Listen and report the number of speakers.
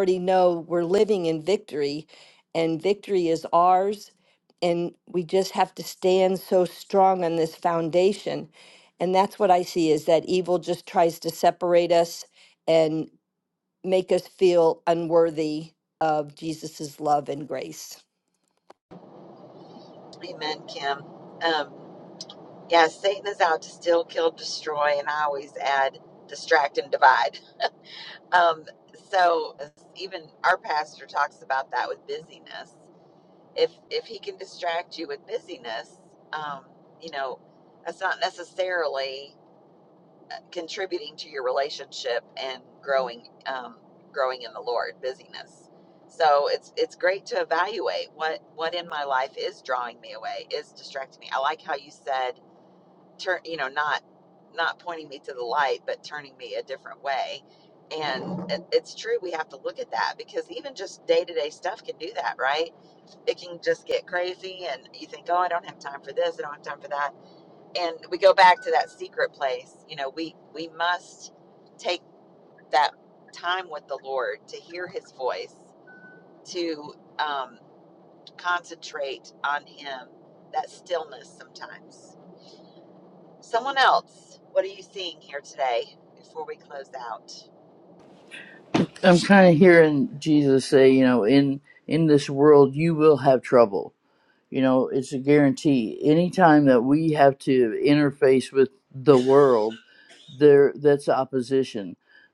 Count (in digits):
3